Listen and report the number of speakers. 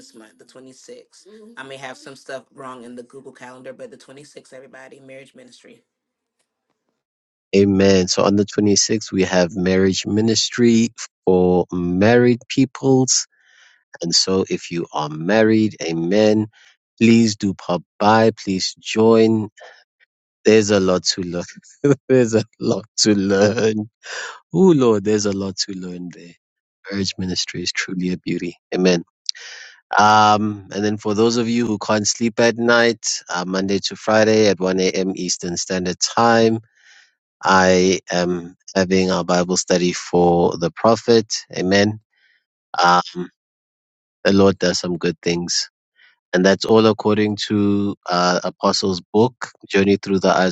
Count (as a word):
two